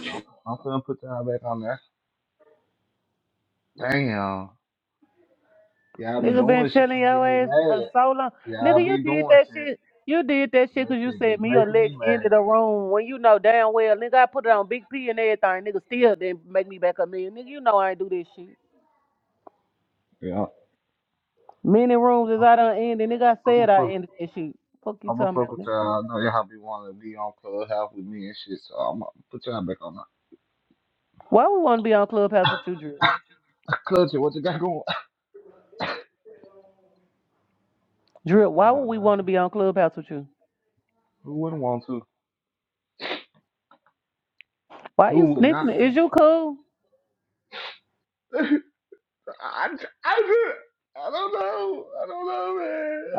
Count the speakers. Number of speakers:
two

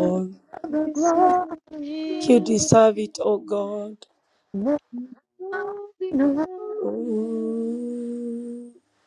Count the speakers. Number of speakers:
three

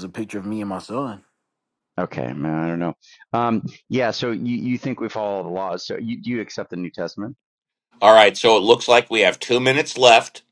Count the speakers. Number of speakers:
three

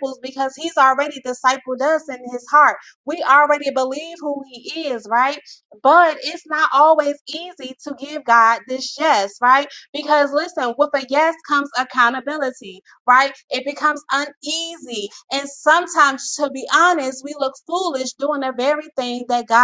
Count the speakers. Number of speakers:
one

